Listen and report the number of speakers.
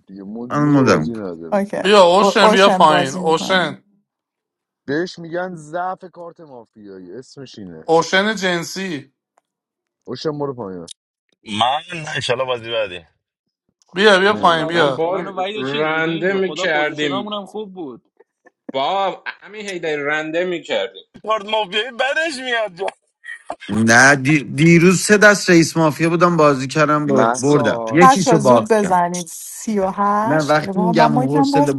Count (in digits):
7